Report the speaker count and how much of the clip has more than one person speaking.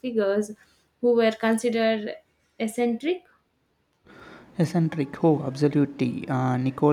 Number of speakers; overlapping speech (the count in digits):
2, no overlap